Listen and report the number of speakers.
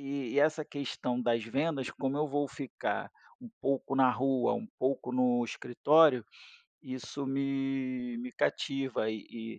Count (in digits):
1